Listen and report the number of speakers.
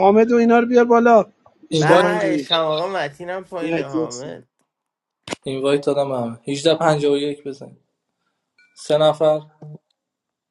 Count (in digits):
3